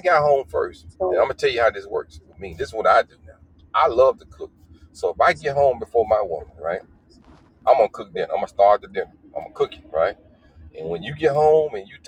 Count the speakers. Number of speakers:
one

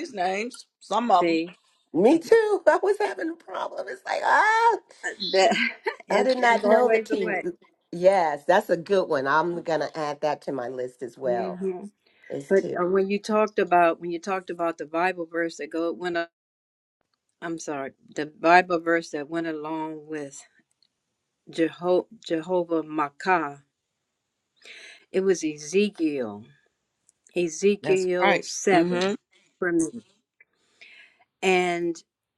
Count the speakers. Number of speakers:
three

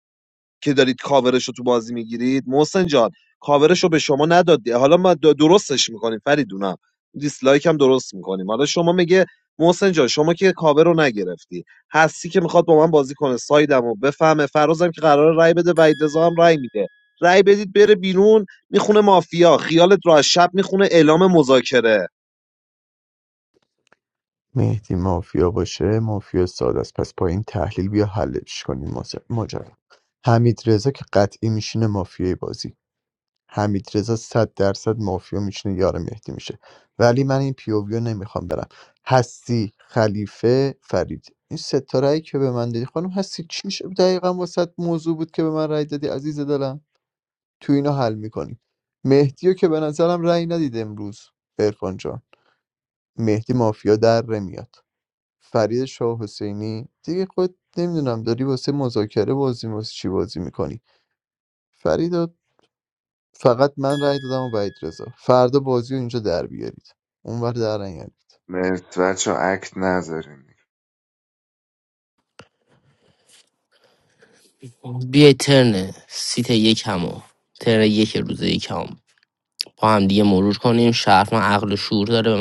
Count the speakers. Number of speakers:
four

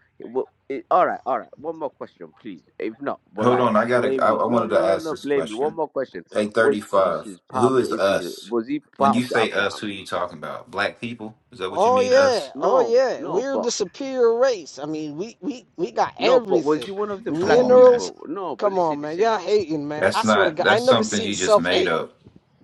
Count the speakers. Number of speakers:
three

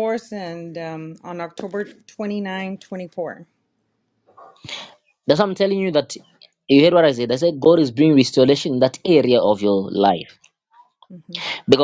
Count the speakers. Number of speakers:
two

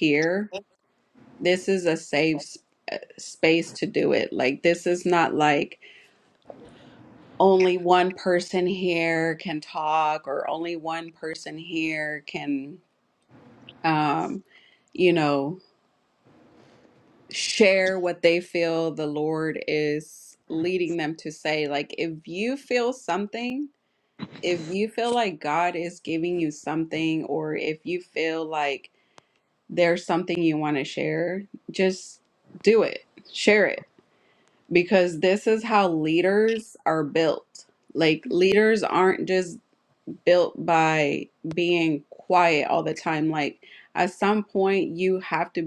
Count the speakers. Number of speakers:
one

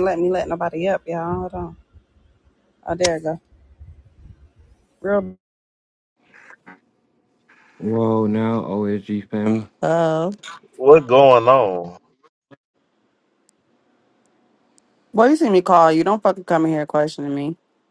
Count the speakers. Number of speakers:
three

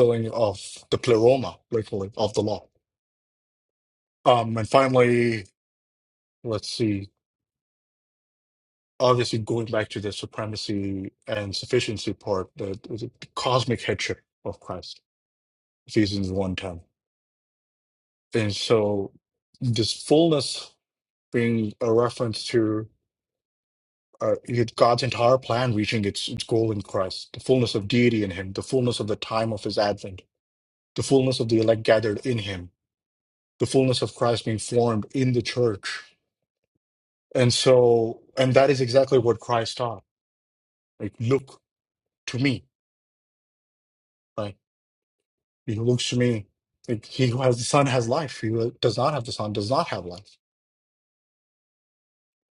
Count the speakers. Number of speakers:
one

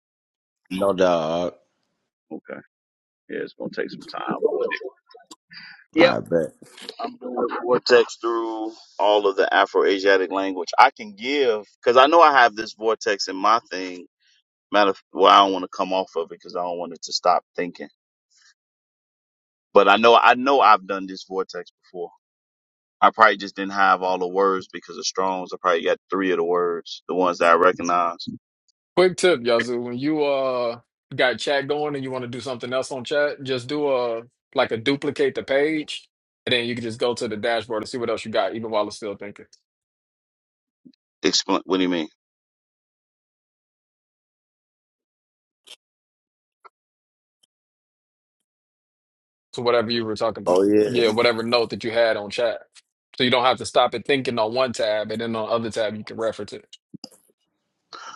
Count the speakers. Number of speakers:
three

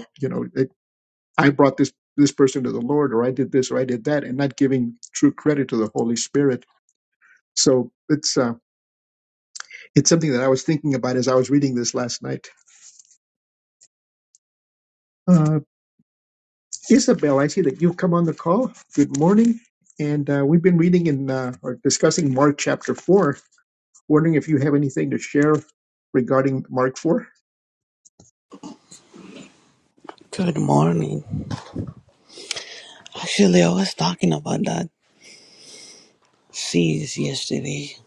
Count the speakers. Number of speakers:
two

